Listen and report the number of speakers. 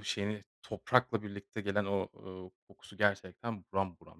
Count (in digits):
1